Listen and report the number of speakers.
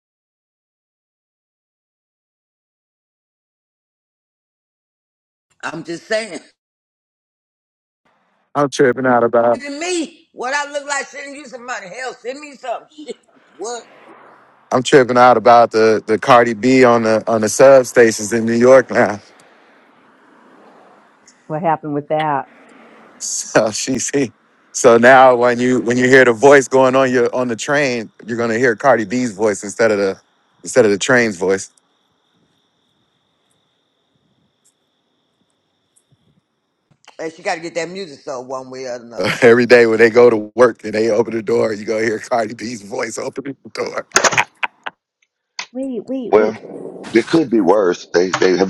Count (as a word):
four